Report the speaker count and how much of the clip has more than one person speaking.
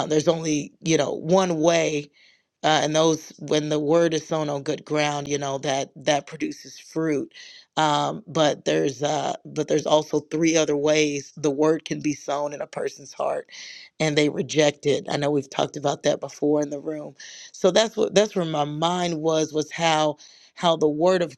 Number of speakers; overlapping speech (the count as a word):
one, no overlap